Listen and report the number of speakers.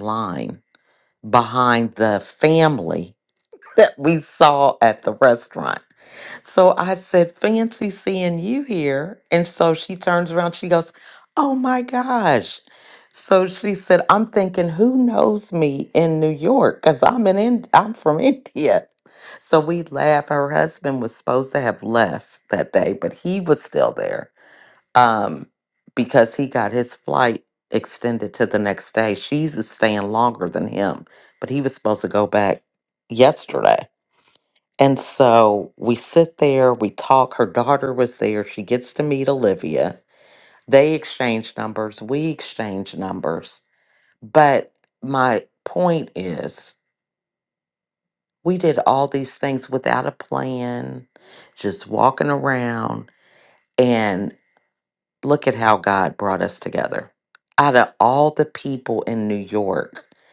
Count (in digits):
1